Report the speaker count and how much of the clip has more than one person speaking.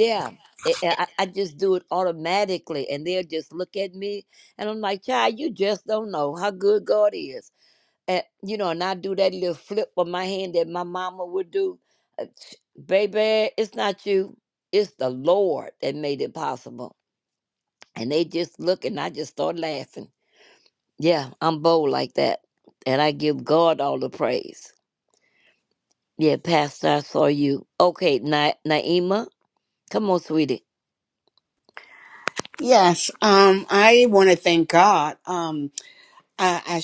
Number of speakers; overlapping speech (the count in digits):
2, no overlap